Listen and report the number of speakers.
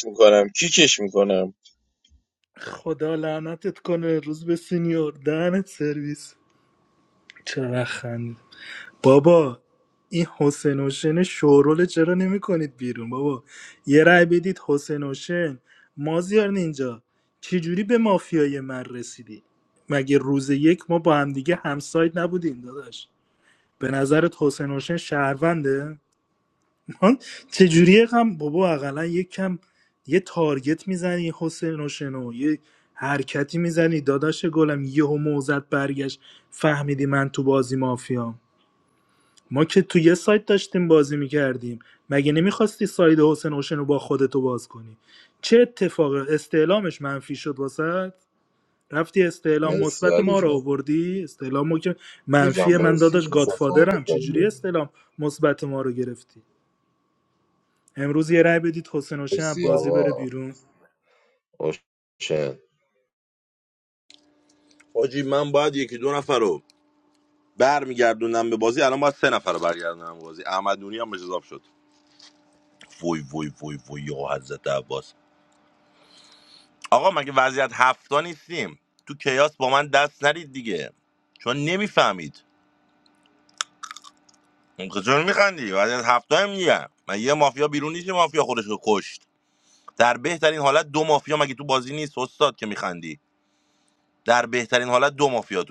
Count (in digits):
4